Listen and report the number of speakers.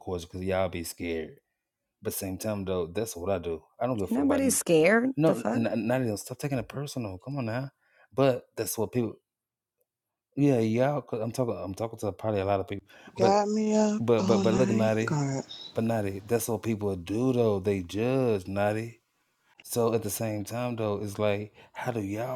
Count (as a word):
three